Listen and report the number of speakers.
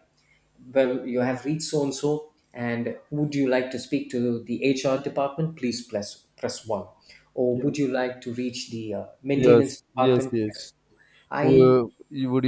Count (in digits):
2